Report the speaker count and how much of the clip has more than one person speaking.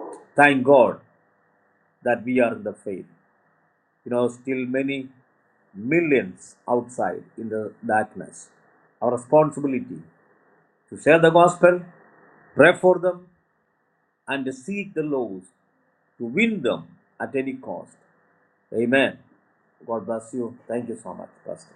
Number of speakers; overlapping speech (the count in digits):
1, no overlap